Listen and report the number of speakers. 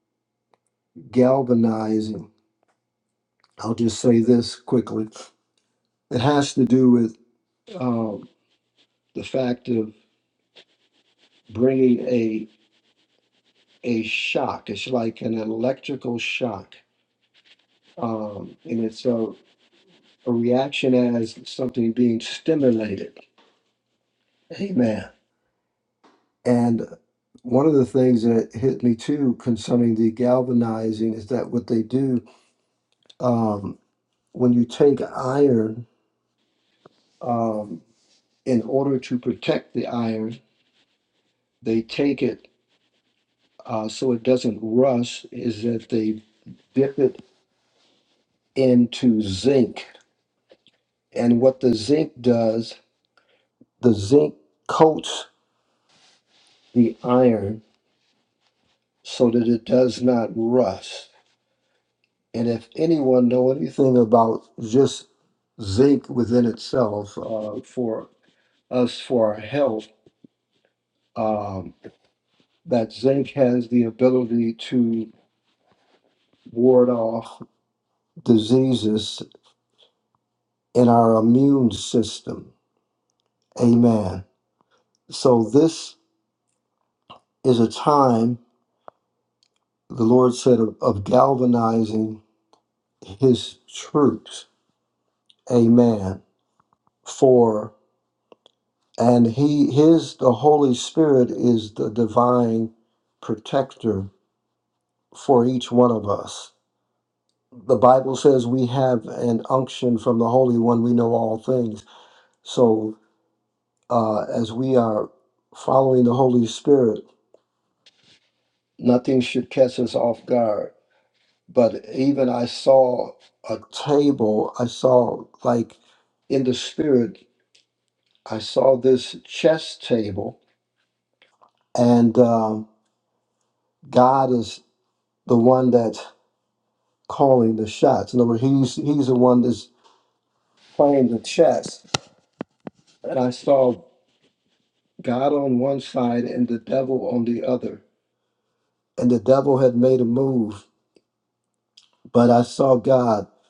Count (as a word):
one